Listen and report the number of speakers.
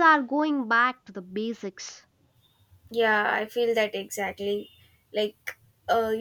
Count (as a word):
two